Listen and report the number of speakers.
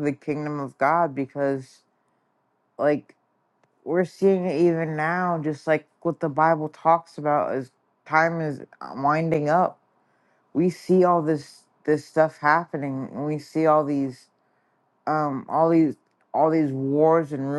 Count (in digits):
1